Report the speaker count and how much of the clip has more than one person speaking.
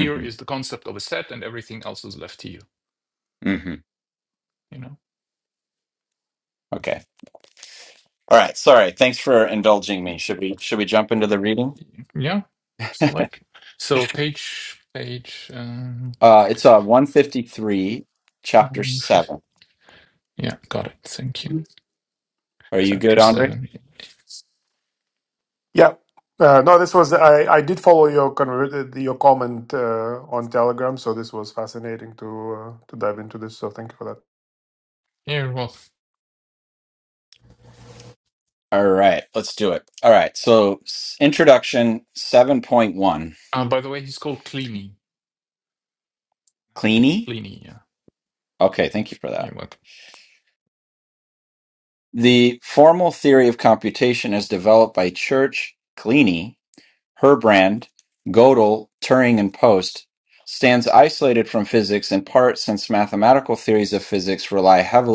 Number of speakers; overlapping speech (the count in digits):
3, about 2%